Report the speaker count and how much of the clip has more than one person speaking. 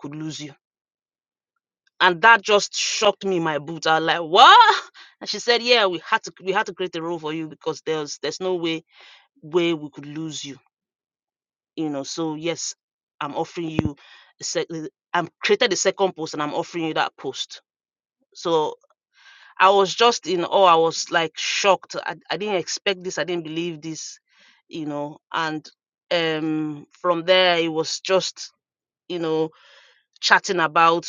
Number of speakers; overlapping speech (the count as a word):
one, no overlap